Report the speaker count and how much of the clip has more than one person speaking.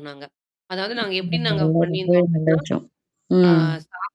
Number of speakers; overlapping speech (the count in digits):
2, about 28%